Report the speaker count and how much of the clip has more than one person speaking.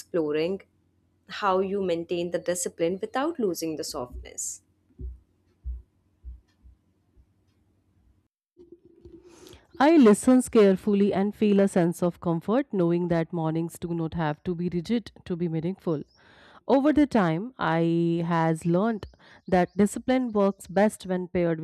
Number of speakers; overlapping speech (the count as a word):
two, no overlap